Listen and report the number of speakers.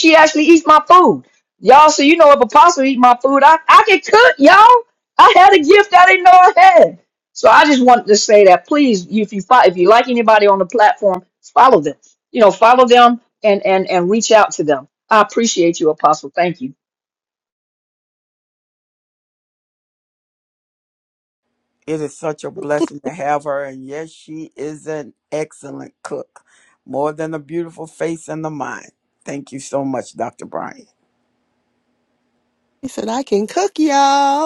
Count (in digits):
3